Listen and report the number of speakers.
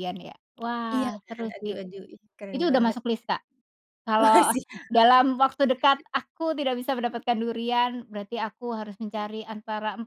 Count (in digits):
2